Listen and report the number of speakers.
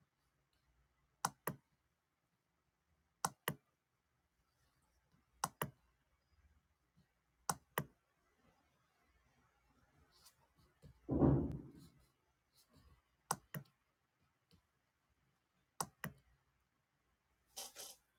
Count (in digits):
0